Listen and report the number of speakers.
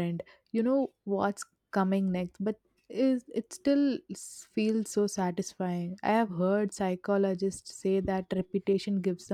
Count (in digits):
1